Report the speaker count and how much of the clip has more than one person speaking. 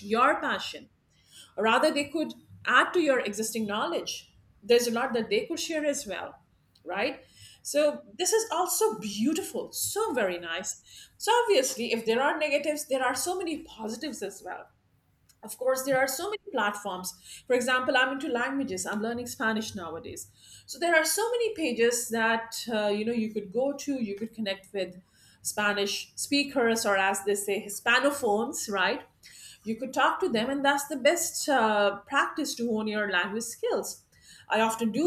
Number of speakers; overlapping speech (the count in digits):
1, no overlap